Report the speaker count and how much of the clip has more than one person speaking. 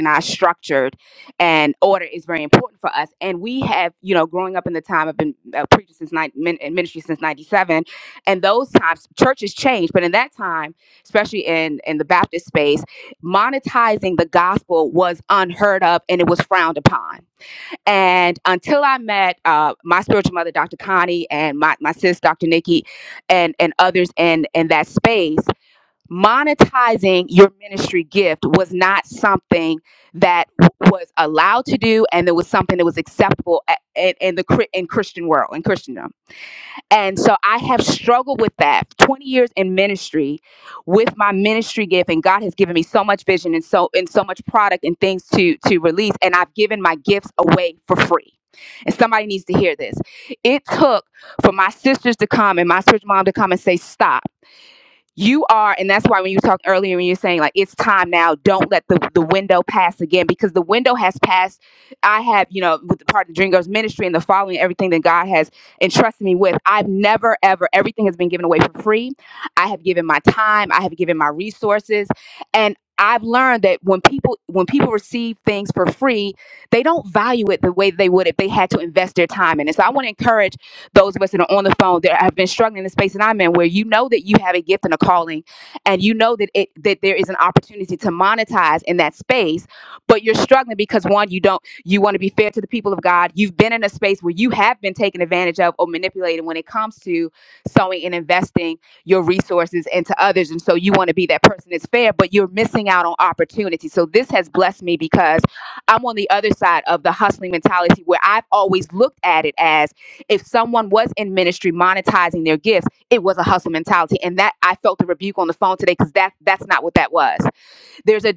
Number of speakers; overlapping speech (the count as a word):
one, no overlap